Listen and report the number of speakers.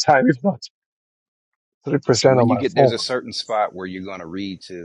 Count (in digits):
2